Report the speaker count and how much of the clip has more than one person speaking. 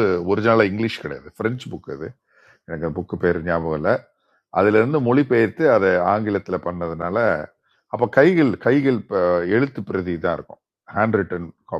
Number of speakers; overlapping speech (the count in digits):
1, no overlap